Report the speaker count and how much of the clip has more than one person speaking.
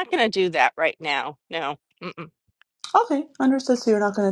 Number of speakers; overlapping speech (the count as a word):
two, no overlap